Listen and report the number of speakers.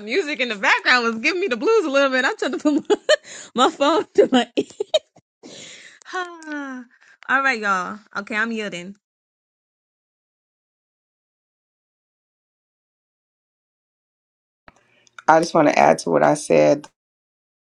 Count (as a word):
two